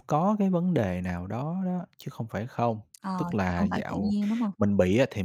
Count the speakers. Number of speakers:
2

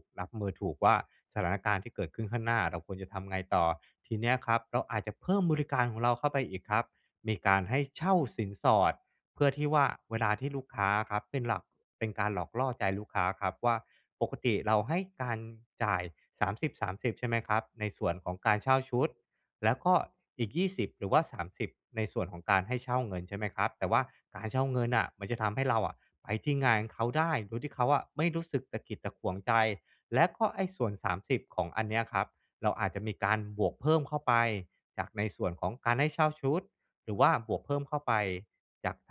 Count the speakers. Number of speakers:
1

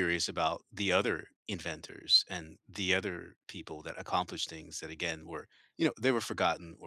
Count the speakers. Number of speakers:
1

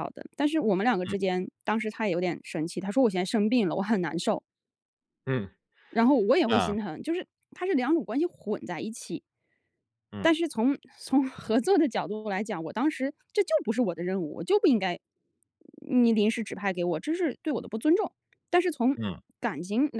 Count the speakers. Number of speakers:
2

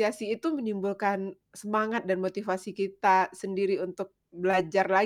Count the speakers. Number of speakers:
1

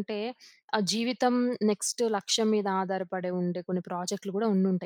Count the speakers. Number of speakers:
1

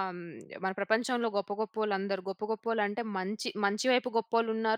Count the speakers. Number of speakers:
1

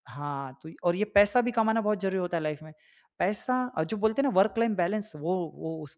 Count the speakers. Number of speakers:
1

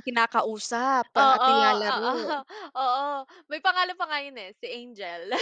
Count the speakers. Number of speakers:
2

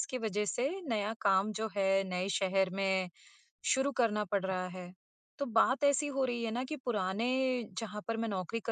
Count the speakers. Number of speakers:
1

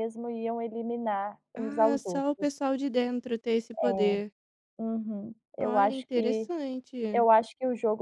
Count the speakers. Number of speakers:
2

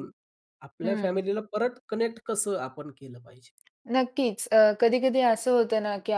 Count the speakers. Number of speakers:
2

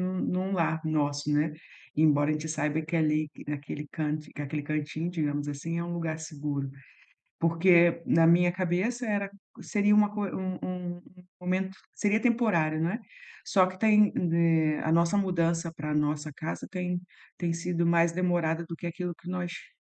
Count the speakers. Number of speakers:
1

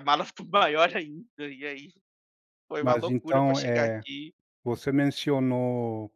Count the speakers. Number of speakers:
2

